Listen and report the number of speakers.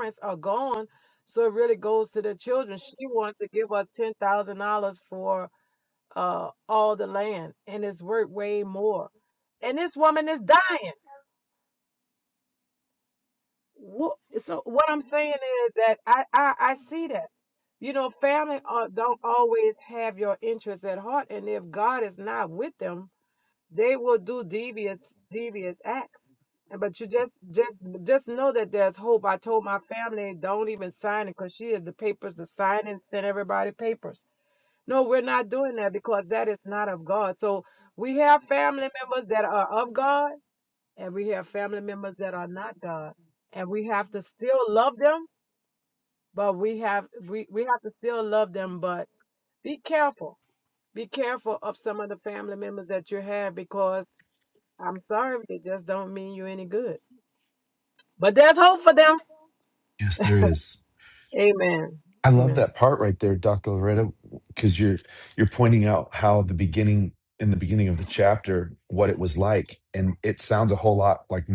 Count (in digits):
2